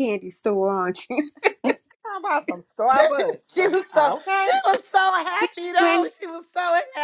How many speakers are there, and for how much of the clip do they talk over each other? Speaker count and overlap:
3, about 18%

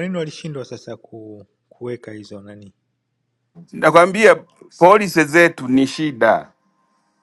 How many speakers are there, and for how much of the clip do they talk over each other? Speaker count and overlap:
2, no overlap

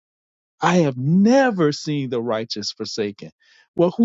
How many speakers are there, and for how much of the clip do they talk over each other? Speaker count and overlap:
1, no overlap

